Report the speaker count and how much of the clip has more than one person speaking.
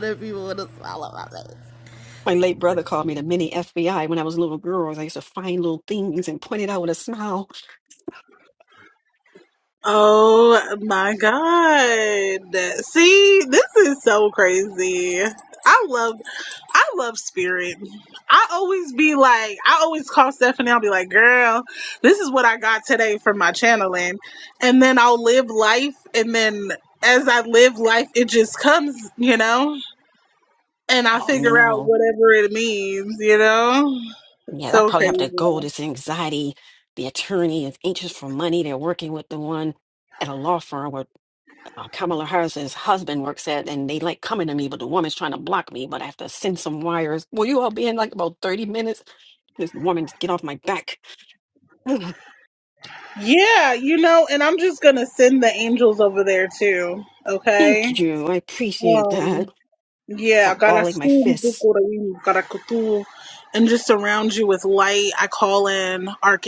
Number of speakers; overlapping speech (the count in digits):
3, about 6%